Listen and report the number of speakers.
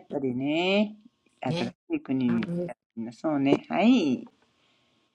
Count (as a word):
one